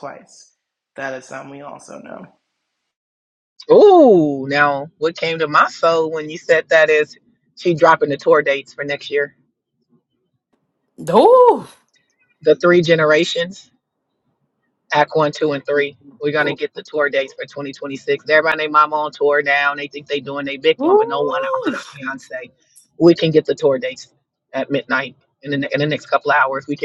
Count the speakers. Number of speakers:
three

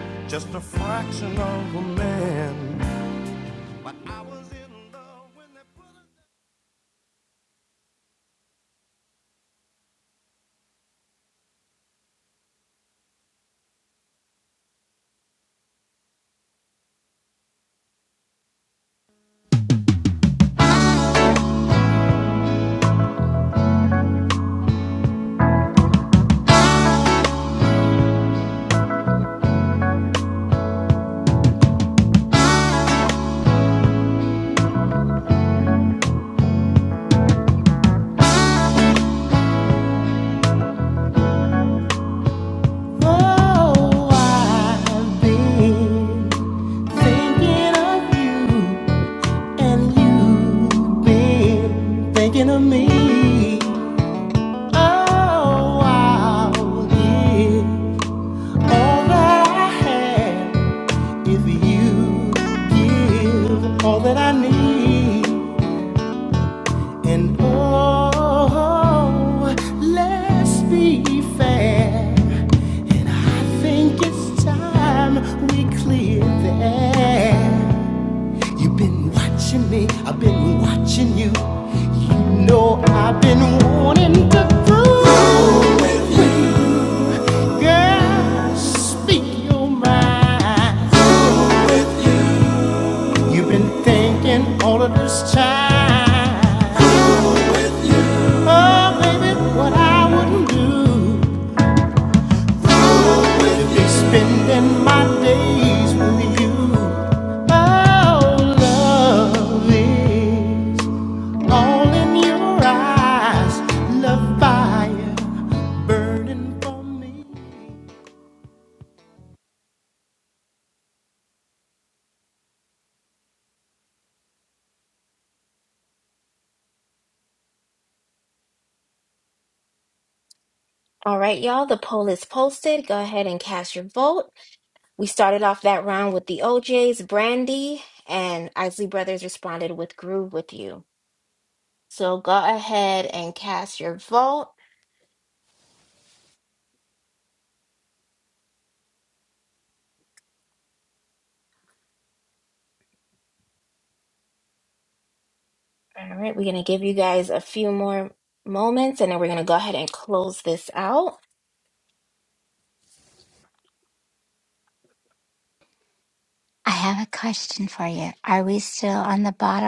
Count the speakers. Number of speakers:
four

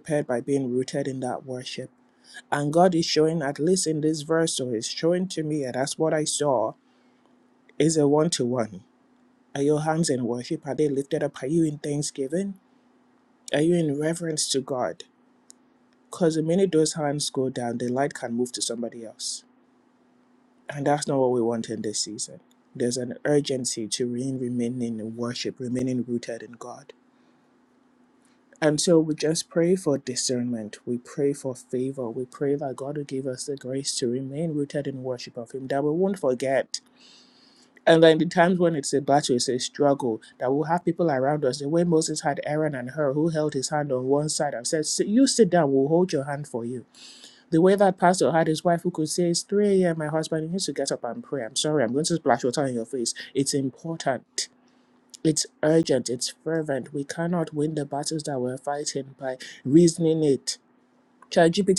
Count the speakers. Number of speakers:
one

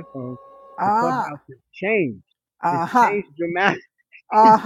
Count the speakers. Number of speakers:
two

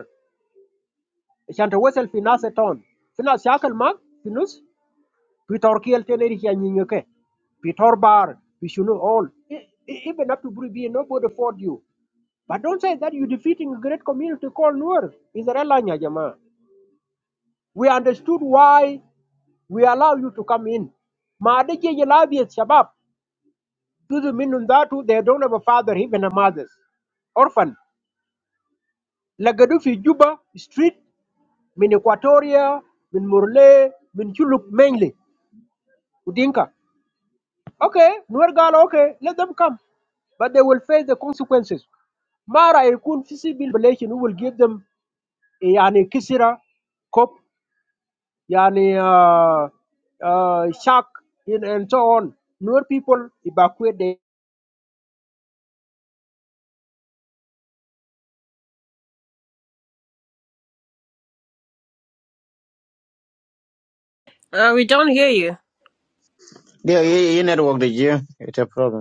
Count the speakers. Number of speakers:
three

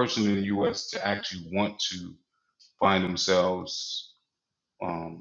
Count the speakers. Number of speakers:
one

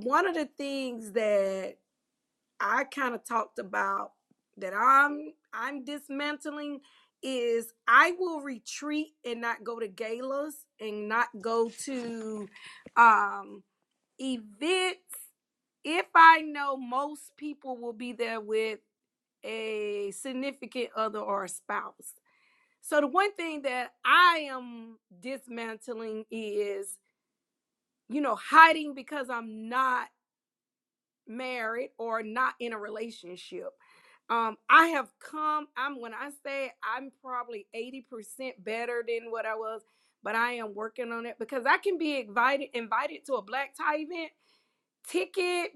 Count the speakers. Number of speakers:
one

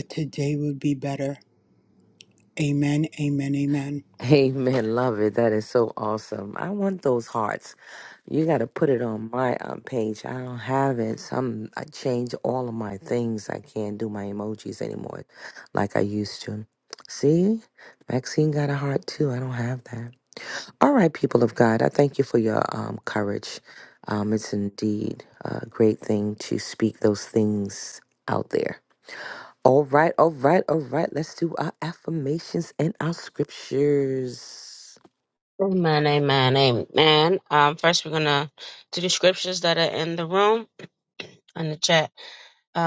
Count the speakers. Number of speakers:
three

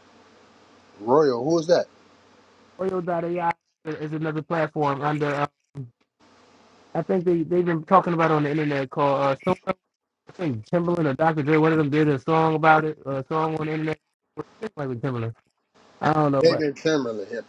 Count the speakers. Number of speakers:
two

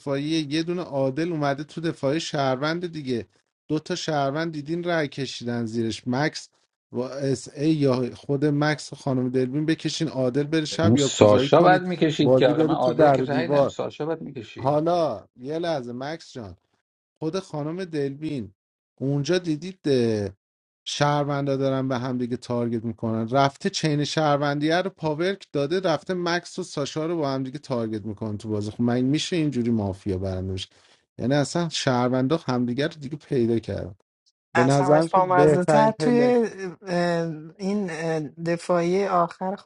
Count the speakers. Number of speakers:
three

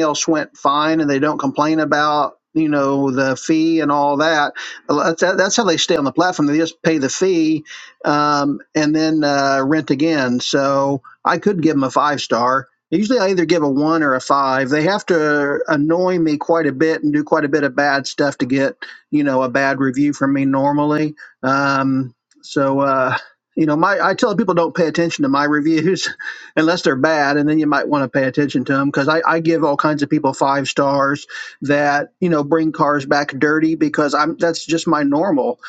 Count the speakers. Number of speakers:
one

